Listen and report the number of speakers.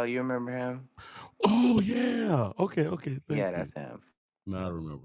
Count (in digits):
2